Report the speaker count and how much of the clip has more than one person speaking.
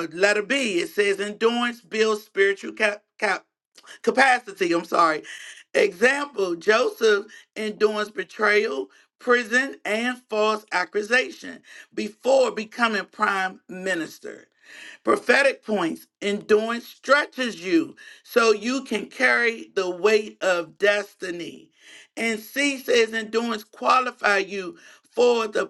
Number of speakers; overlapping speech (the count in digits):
1, no overlap